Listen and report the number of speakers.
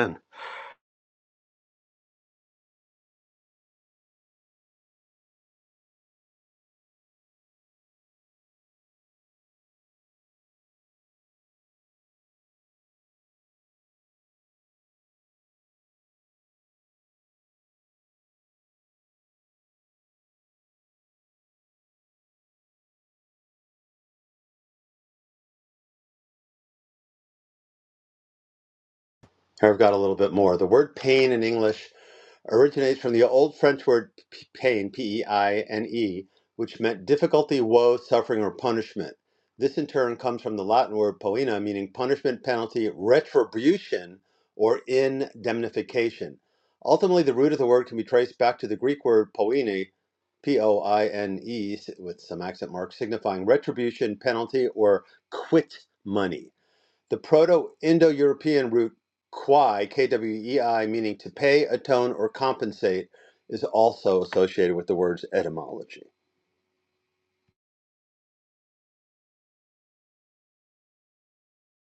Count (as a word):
one